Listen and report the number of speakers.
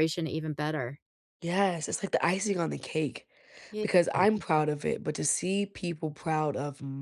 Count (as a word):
two